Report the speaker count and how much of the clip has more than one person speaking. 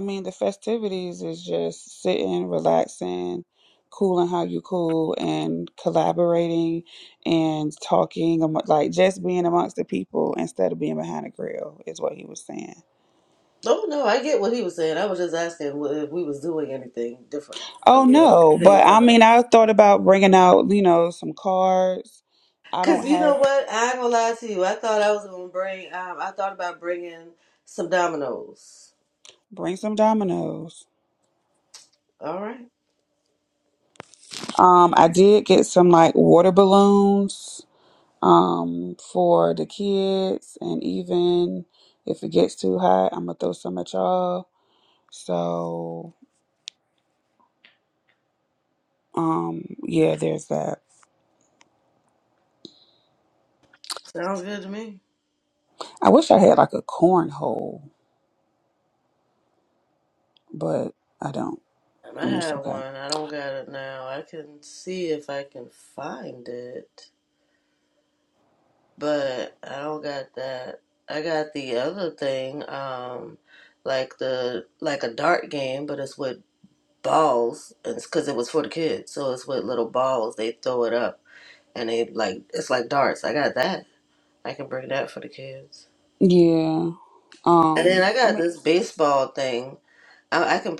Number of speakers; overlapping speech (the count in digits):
2, about 3%